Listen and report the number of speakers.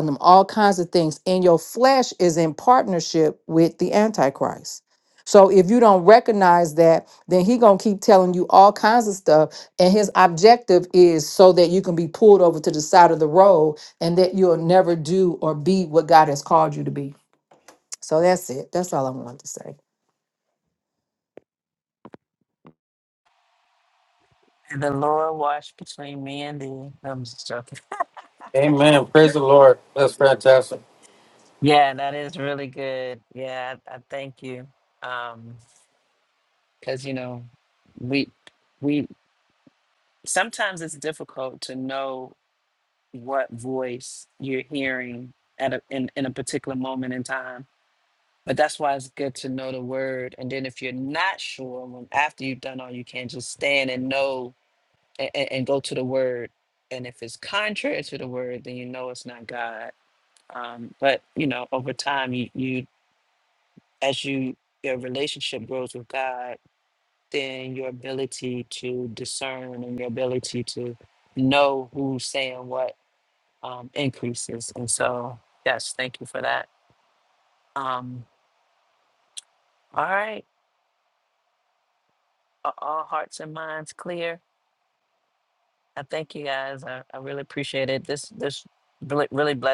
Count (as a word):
three